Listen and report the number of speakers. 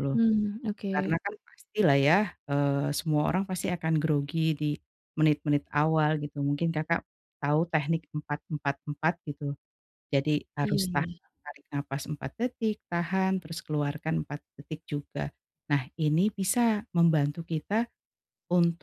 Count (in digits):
2